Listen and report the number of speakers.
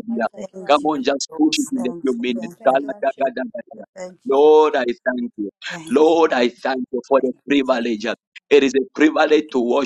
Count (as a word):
three